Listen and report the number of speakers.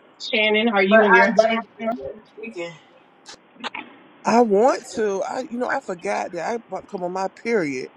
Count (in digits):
3